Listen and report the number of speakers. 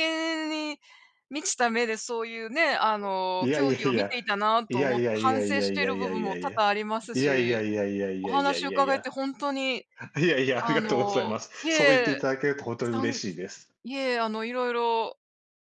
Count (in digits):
2